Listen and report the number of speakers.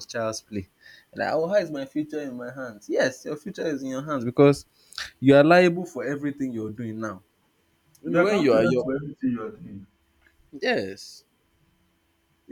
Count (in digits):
2